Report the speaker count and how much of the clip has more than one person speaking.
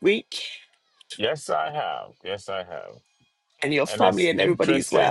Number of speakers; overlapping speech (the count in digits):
2, about 25%